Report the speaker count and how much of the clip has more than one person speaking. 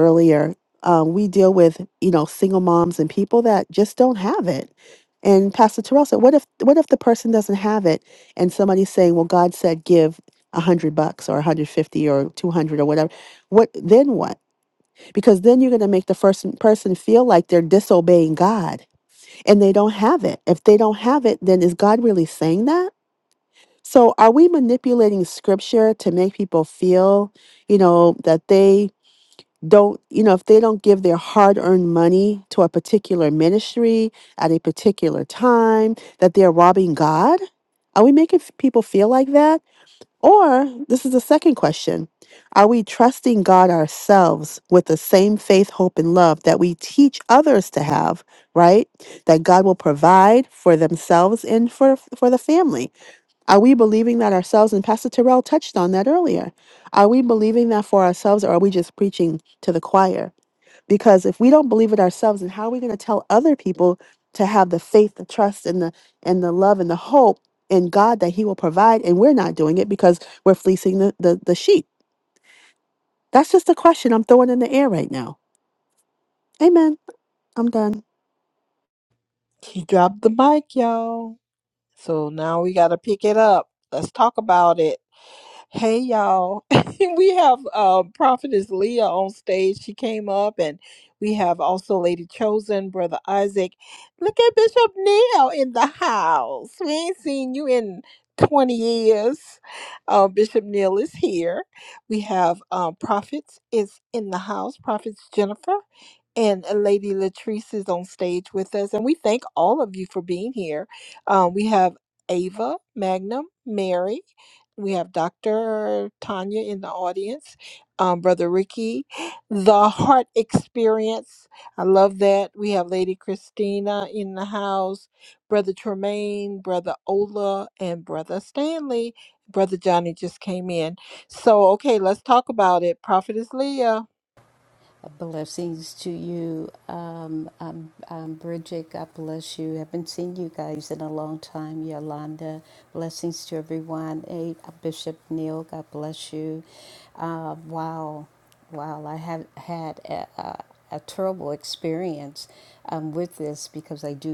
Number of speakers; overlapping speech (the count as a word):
three, no overlap